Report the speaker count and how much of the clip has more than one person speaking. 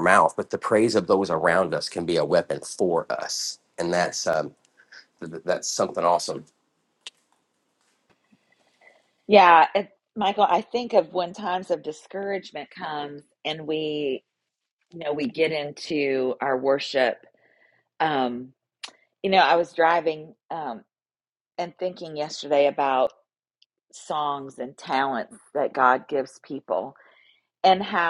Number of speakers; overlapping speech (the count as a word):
two, no overlap